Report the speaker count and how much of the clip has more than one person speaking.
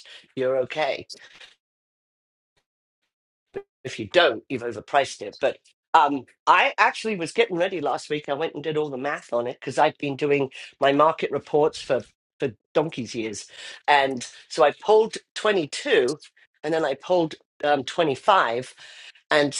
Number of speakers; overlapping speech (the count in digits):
1, no overlap